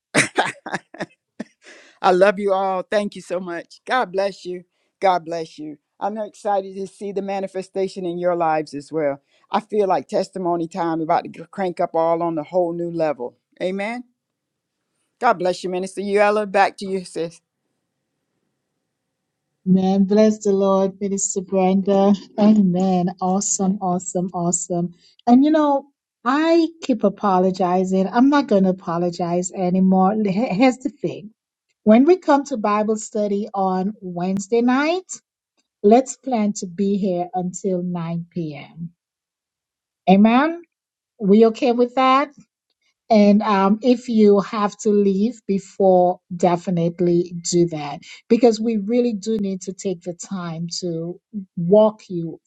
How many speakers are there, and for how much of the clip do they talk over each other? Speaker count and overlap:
two, no overlap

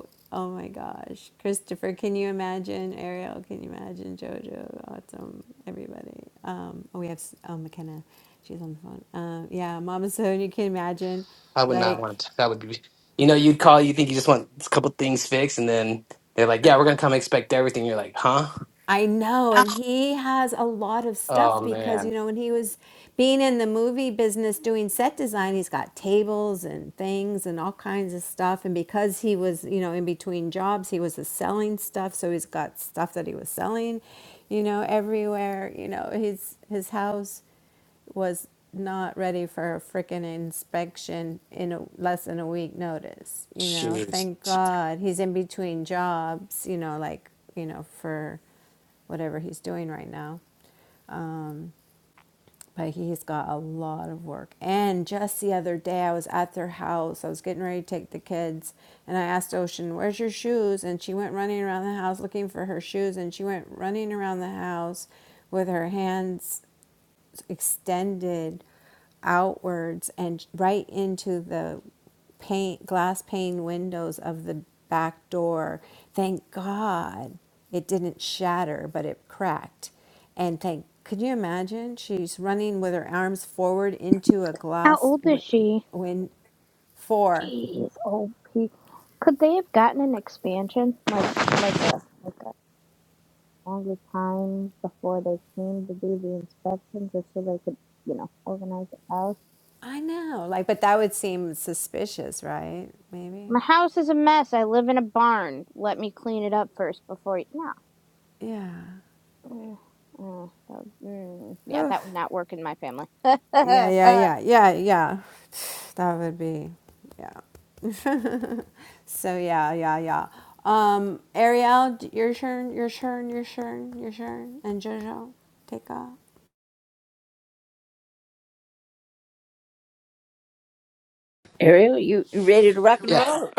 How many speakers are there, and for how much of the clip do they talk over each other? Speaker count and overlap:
four, about 3%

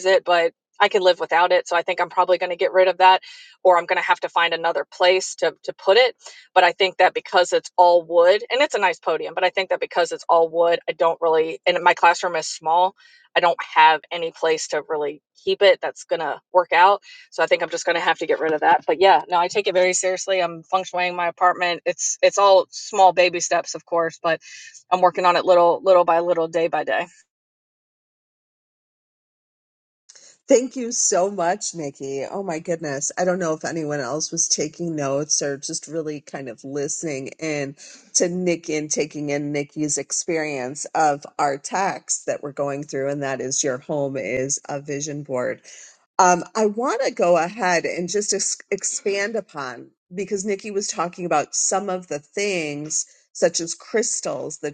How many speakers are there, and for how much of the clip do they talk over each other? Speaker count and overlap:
two, no overlap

